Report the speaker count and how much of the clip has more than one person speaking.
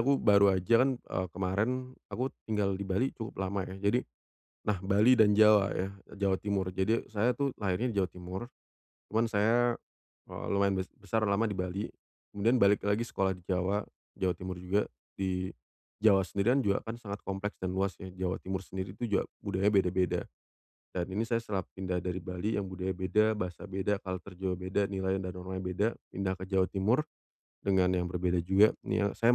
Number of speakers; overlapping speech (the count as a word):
one, no overlap